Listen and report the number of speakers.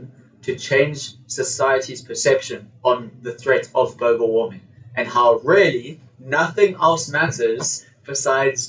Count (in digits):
1